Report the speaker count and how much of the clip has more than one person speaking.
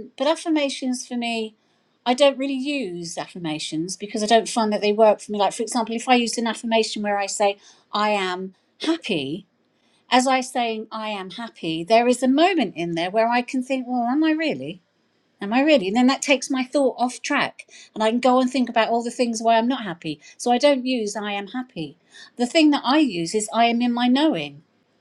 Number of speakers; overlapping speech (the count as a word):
one, no overlap